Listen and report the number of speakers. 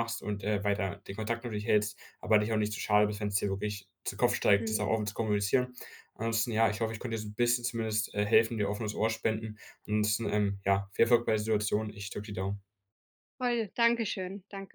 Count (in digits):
2